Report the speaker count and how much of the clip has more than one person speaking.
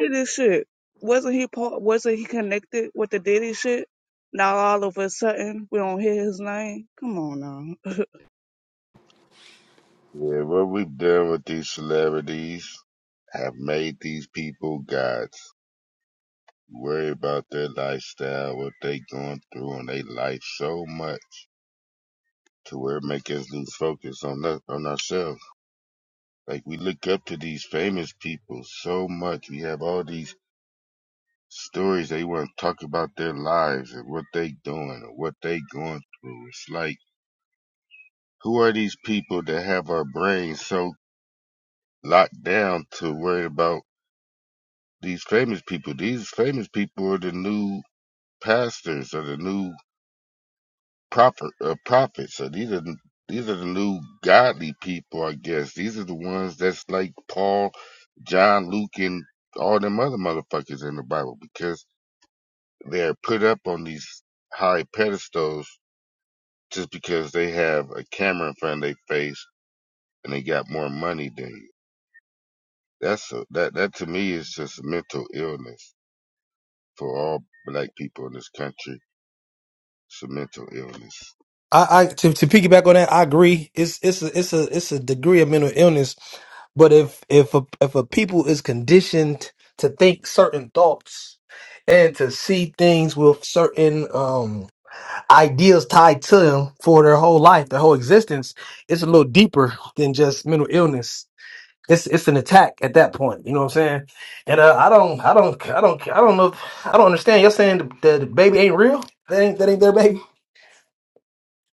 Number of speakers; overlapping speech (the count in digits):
3, no overlap